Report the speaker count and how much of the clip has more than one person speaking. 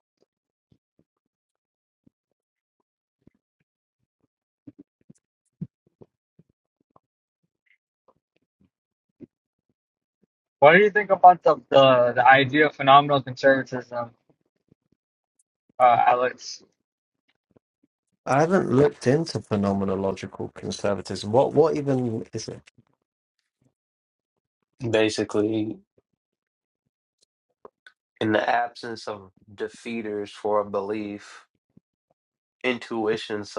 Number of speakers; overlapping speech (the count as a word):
three, no overlap